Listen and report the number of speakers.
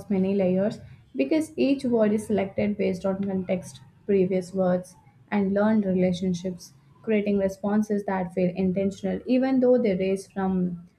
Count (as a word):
one